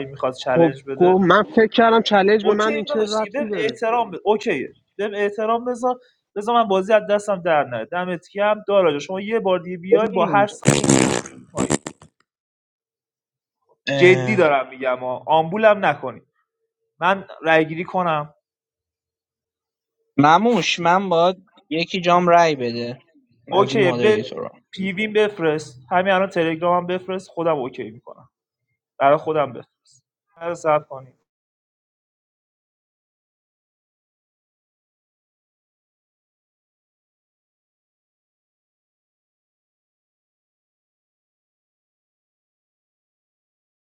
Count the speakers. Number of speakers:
3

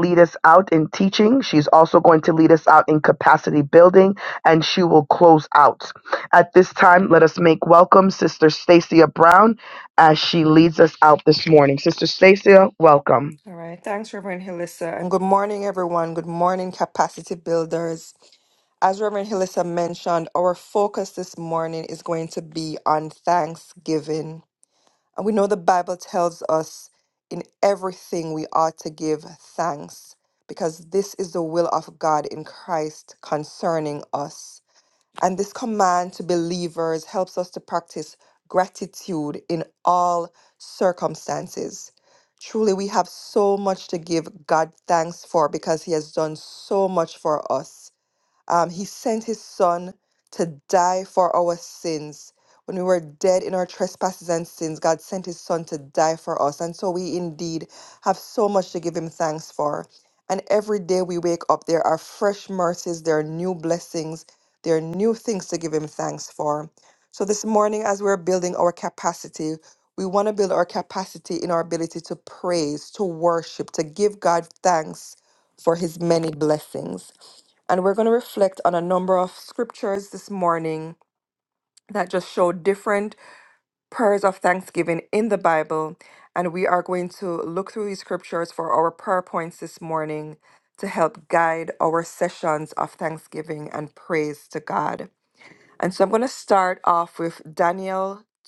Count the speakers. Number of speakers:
2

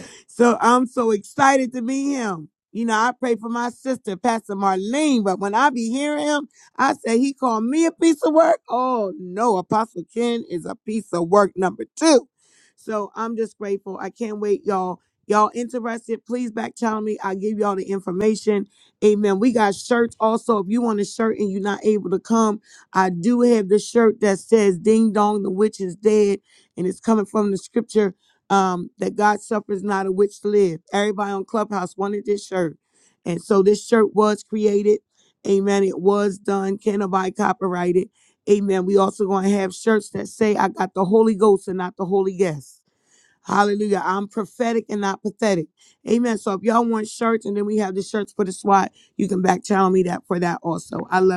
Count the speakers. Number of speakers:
1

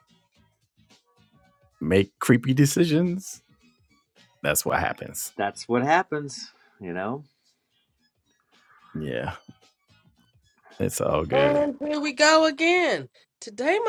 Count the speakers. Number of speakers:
3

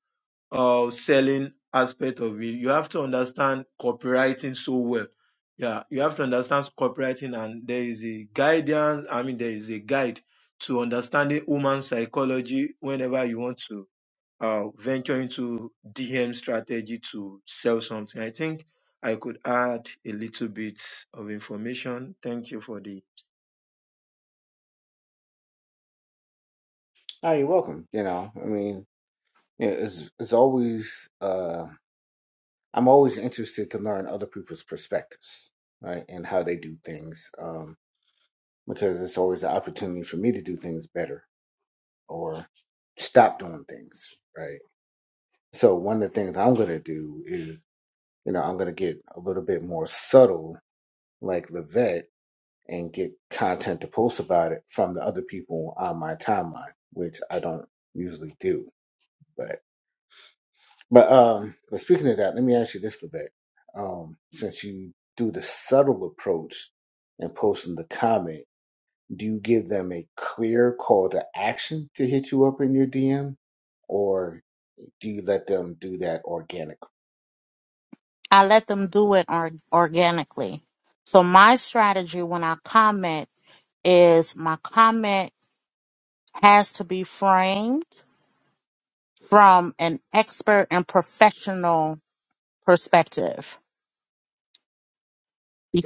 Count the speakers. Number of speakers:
3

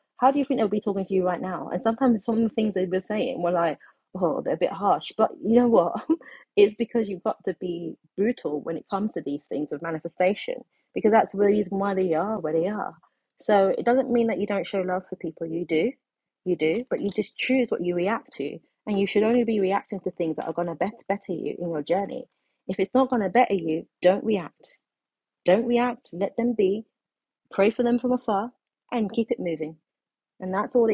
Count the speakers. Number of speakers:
1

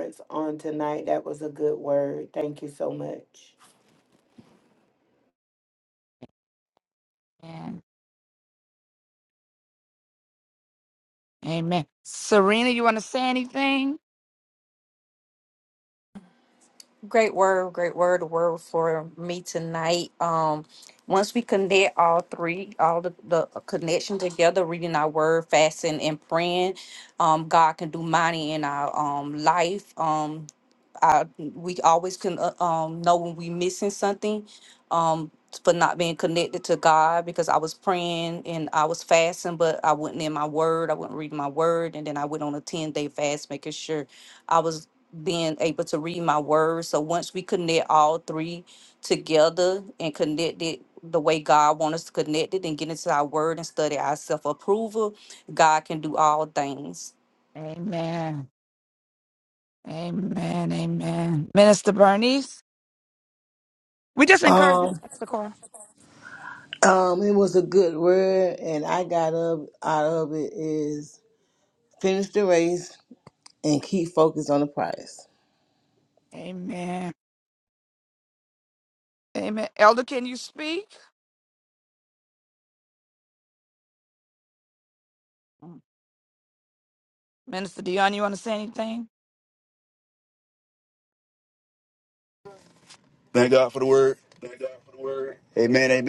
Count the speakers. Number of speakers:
5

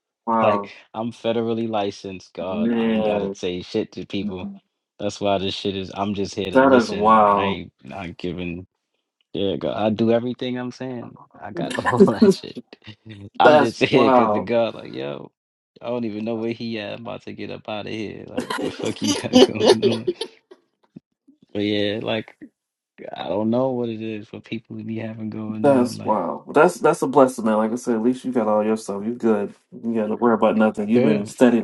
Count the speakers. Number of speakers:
2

